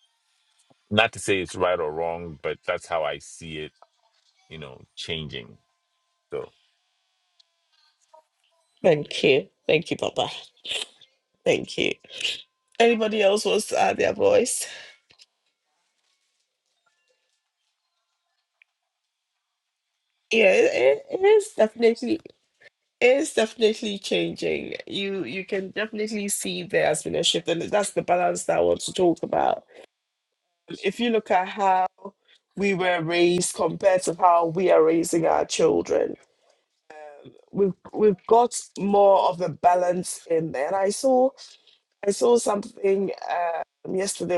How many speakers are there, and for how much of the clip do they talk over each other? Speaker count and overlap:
2, no overlap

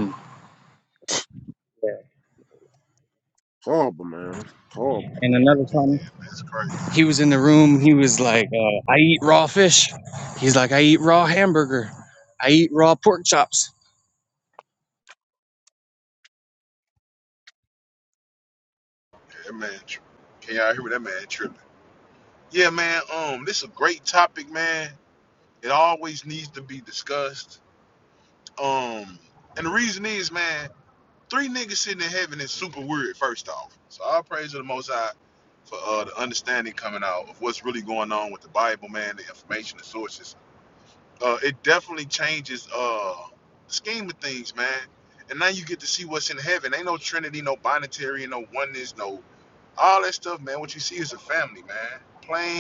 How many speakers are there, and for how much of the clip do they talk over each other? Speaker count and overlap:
3, about 1%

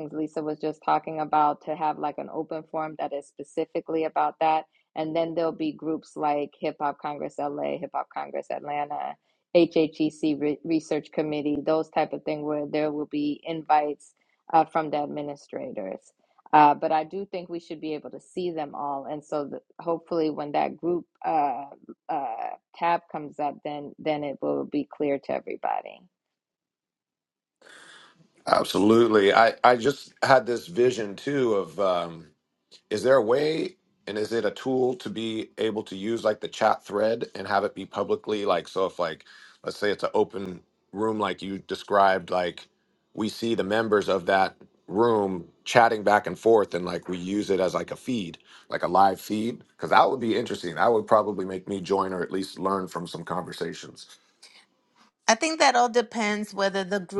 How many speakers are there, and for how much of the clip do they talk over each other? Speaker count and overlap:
3, no overlap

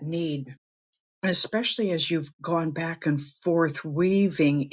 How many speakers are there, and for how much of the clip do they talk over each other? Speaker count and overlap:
1, no overlap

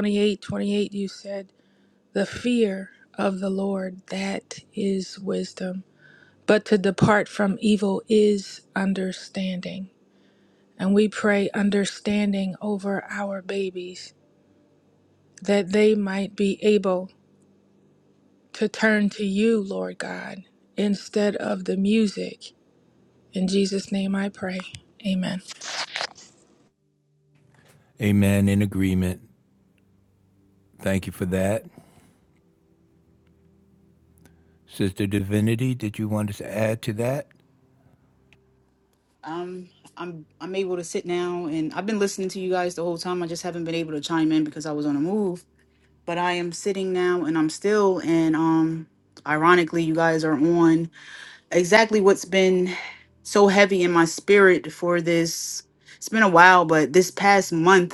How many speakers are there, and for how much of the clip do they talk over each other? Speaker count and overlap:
3, no overlap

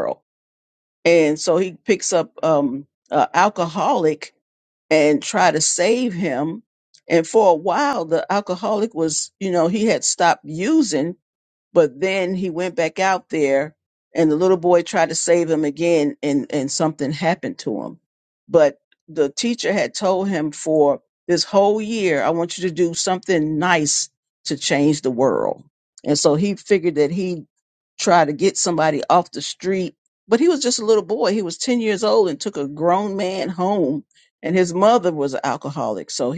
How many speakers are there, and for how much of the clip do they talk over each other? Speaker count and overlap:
1, no overlap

